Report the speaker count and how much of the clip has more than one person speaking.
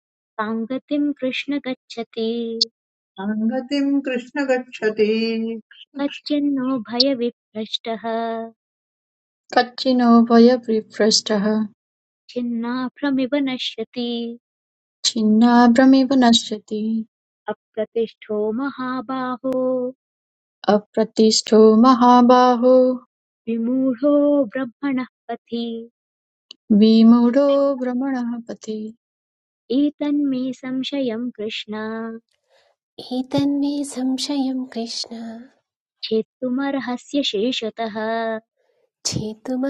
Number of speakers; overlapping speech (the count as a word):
four, no overlap